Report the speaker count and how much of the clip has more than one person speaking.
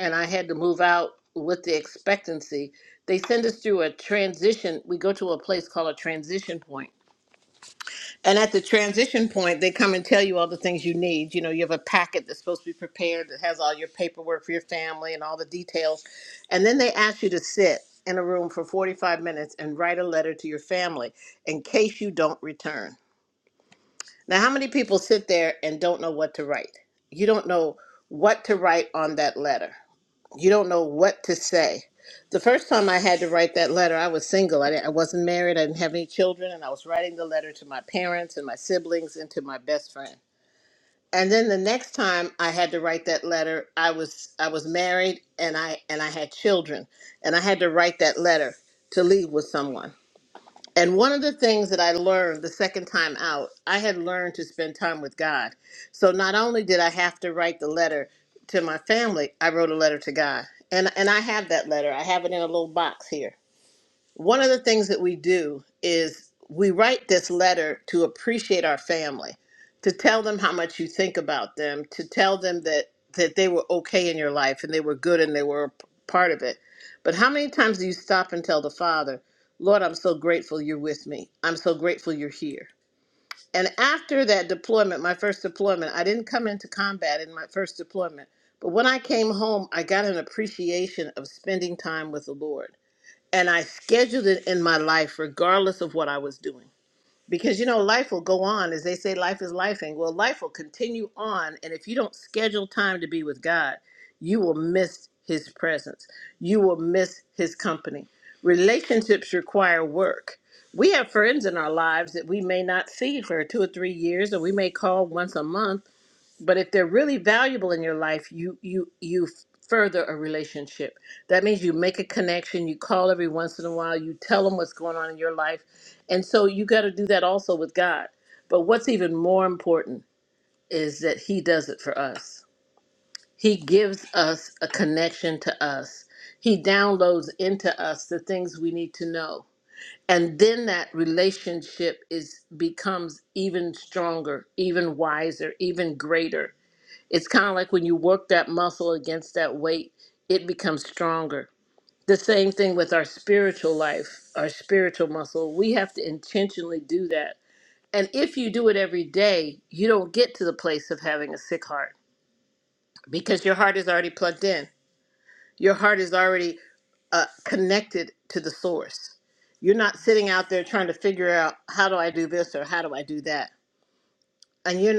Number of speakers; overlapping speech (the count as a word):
one, no overlap